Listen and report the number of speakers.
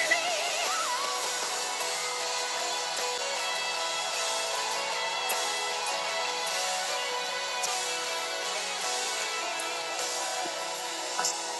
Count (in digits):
0